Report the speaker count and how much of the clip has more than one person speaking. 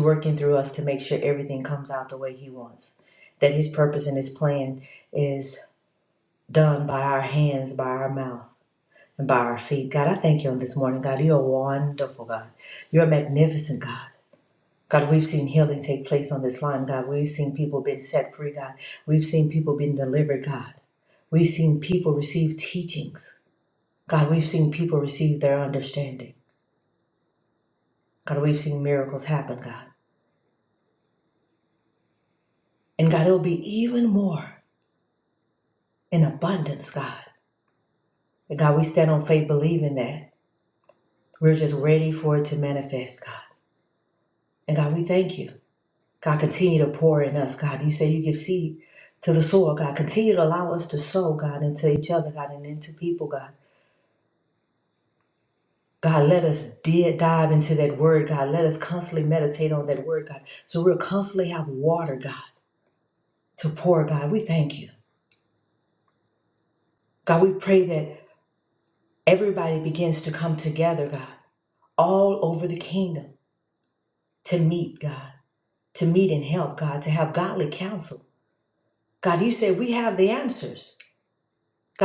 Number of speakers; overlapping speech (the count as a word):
one, no overlap